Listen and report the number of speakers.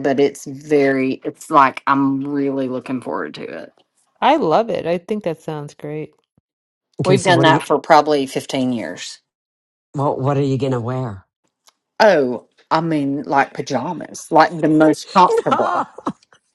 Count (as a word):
three